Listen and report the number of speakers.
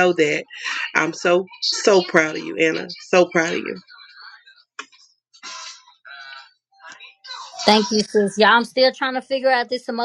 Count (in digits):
2